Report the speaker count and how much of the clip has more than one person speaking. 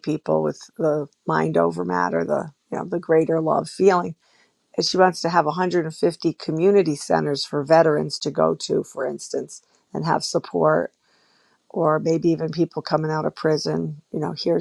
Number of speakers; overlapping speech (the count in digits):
1, no overlap